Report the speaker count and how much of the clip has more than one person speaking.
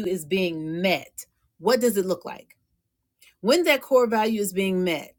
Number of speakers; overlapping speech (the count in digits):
1, no overlap